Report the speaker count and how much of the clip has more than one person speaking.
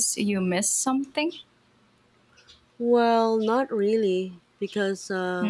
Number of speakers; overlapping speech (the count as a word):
two, about 2%